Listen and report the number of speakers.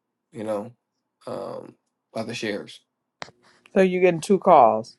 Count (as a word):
two